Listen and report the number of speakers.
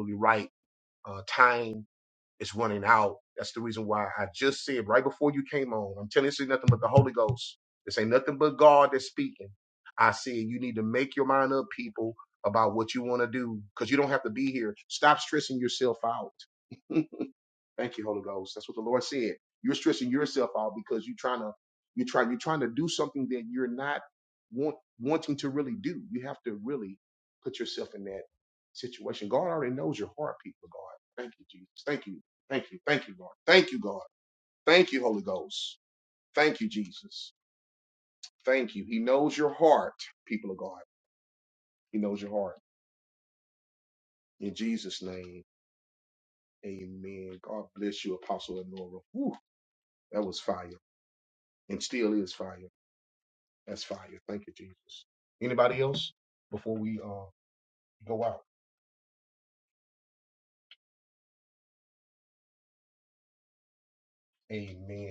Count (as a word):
one